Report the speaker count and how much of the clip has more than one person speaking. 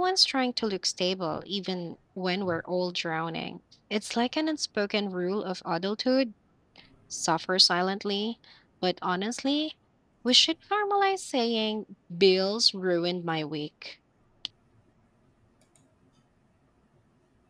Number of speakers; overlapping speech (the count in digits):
1, no overlap